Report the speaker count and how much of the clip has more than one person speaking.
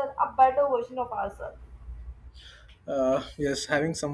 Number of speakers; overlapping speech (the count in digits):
2, no overlap